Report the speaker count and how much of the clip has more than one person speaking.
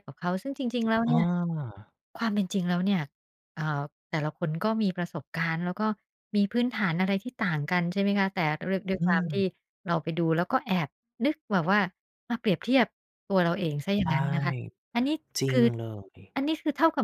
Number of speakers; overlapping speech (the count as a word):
two, about 5%